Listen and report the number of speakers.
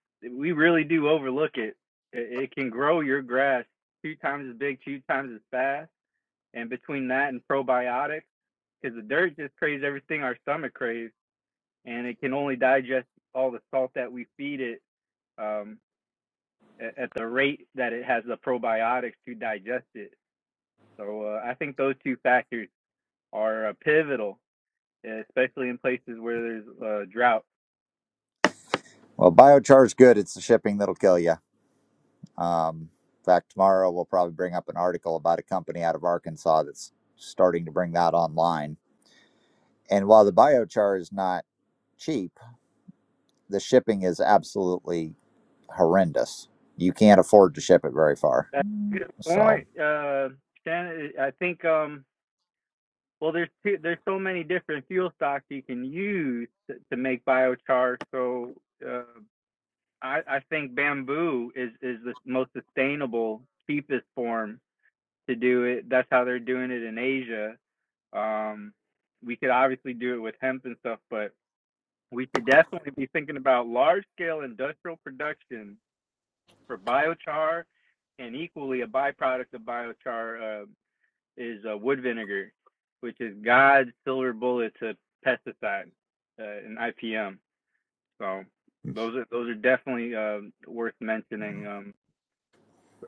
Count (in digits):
2